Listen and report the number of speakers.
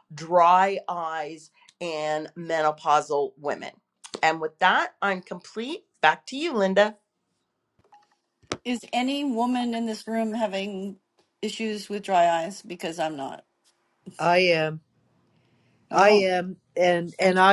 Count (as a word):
three